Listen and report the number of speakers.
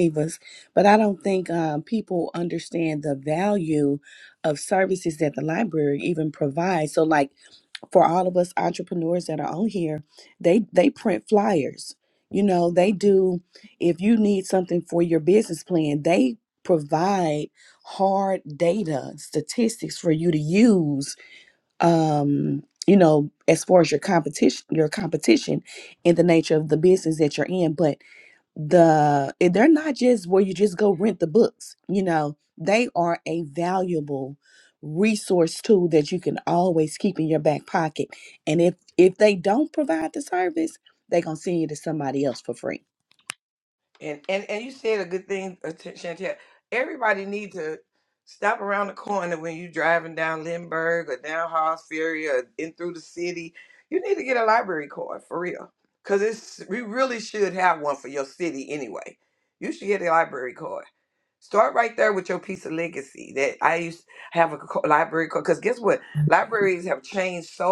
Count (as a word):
two